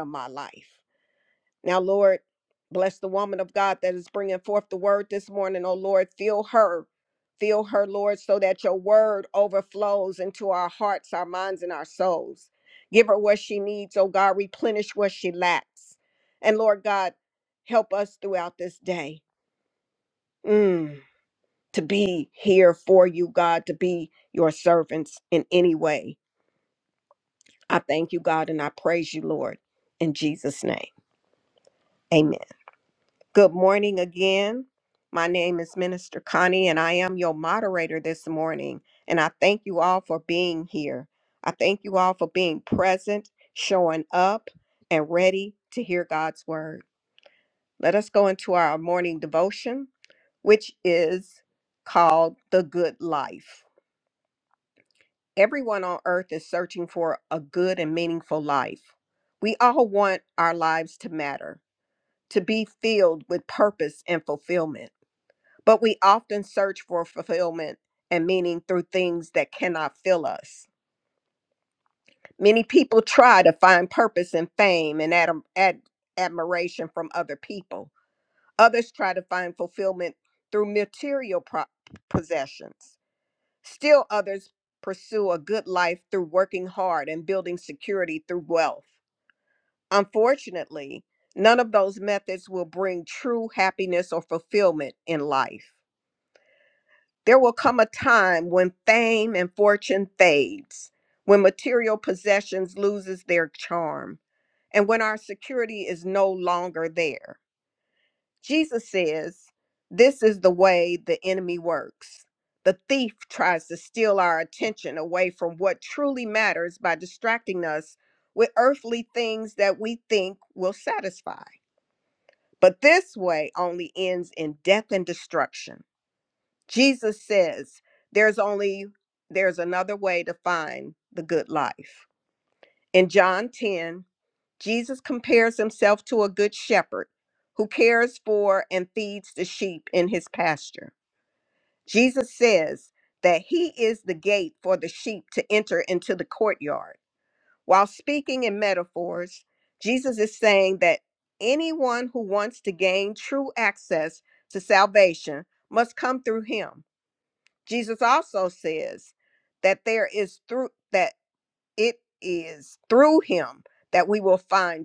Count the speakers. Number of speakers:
1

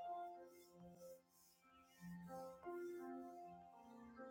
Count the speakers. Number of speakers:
0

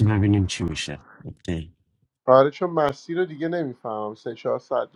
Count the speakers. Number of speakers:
2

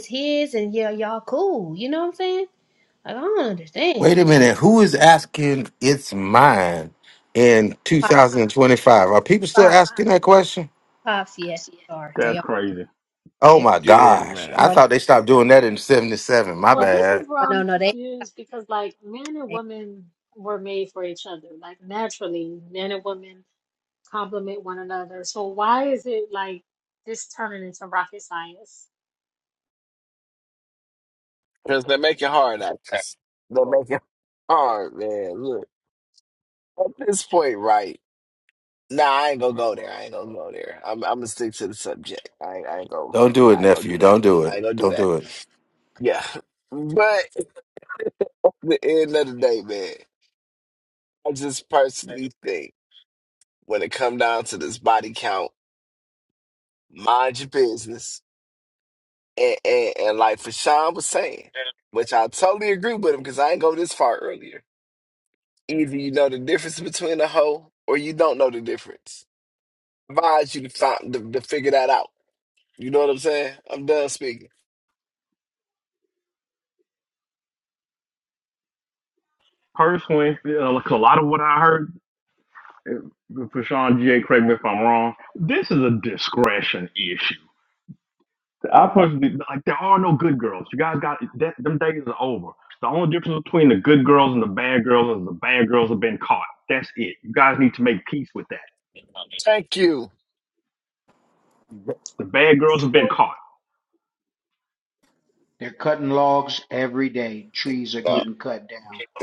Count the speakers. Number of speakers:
6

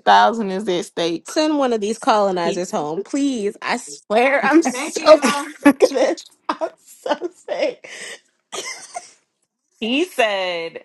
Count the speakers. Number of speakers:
3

